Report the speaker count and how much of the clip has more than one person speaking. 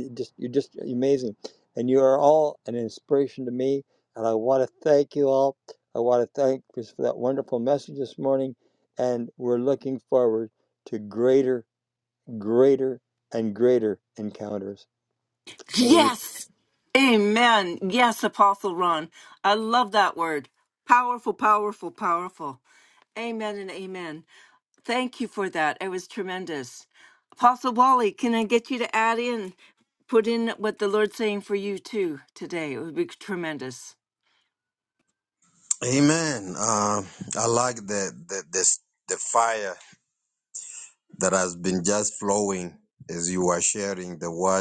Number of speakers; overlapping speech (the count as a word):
three, about 1%